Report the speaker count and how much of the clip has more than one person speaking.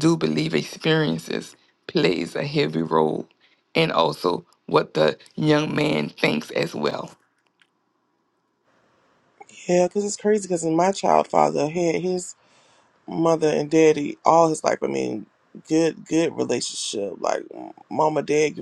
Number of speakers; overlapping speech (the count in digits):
2, no overlap